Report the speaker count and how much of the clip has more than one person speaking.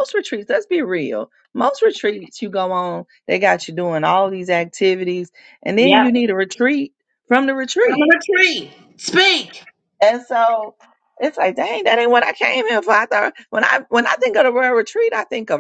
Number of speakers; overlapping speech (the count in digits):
2, about 3%